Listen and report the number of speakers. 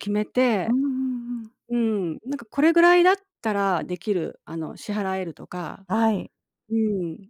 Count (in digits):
2